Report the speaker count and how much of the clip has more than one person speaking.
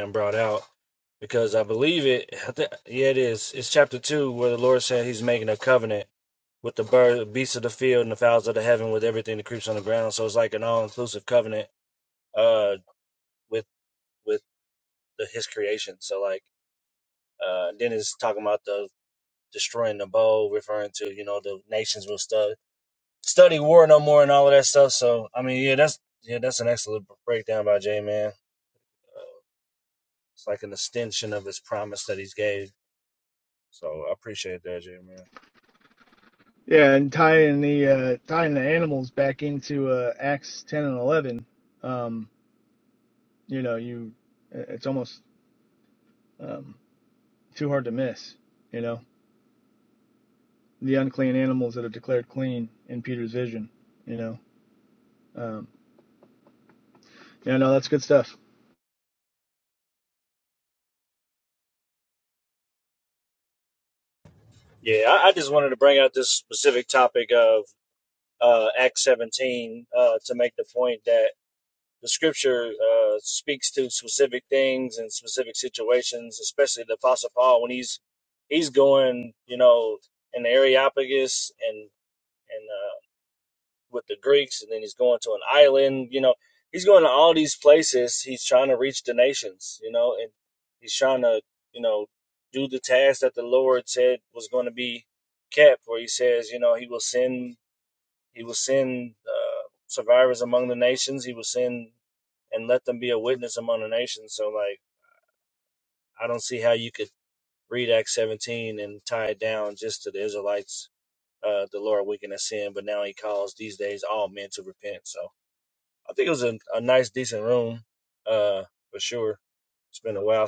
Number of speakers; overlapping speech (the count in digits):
2, no overlap